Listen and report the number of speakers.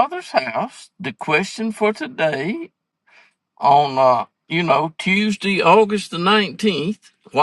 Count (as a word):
one